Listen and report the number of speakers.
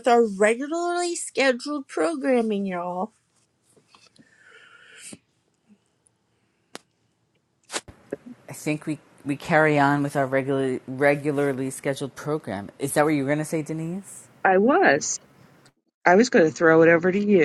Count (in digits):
3